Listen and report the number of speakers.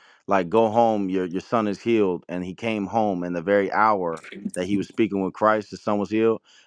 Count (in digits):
1